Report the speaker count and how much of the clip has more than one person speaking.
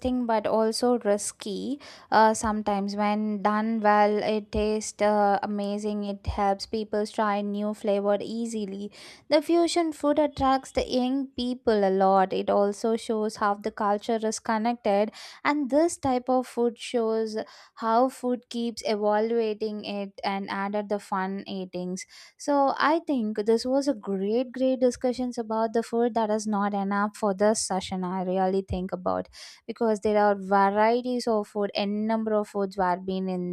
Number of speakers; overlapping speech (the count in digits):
1, no overlap